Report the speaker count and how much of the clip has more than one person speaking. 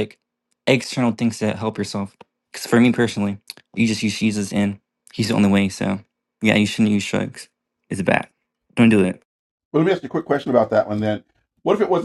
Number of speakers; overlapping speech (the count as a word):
two, no overlap